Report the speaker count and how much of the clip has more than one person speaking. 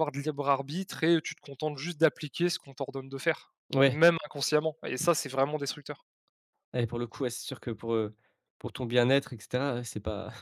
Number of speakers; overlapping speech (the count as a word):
two, about 1%